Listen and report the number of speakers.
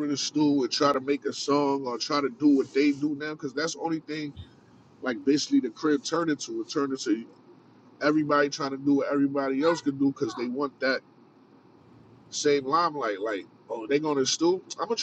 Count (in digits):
1